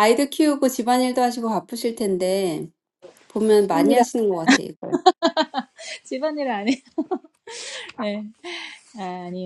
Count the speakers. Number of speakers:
2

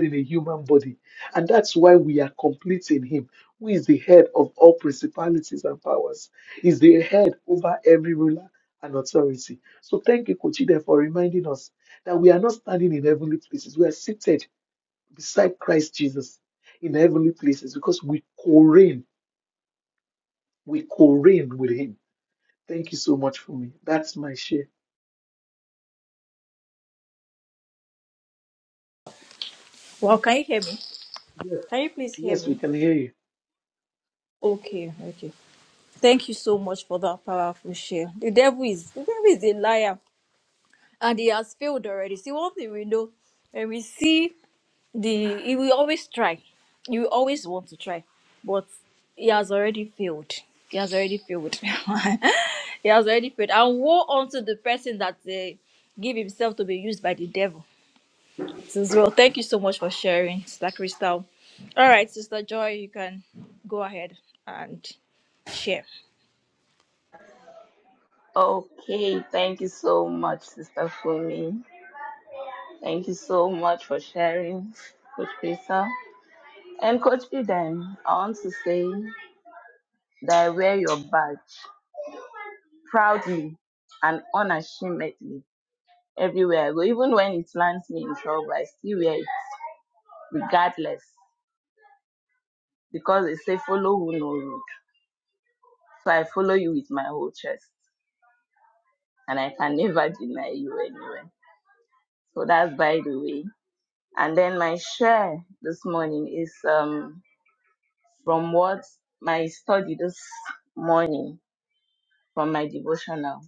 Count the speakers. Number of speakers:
3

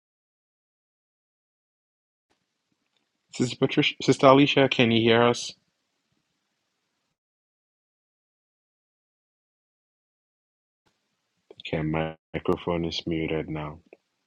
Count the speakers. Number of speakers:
1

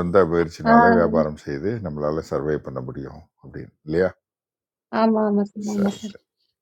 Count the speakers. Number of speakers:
2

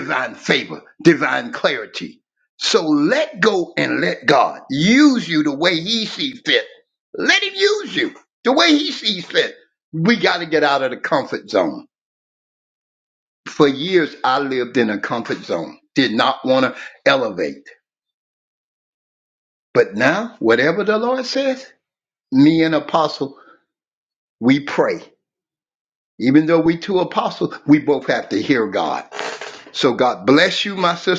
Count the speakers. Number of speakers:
1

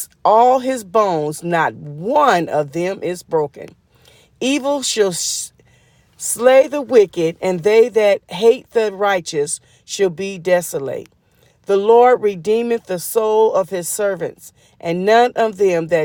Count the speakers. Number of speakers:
1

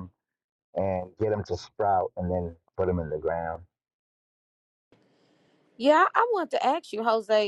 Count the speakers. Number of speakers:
2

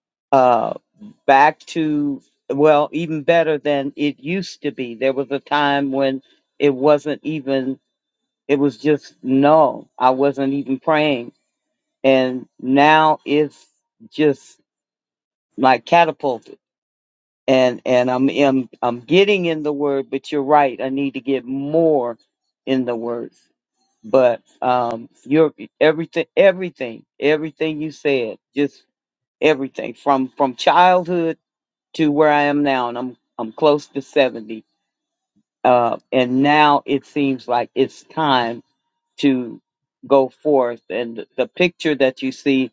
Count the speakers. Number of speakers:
1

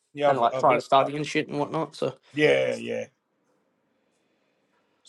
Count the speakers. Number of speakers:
2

